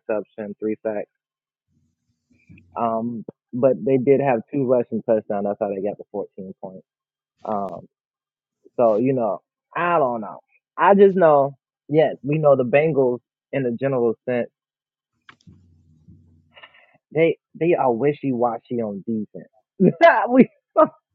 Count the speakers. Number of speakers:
1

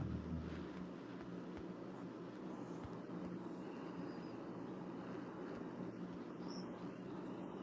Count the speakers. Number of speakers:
0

